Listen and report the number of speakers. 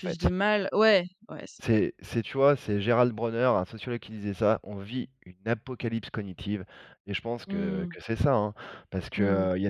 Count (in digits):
2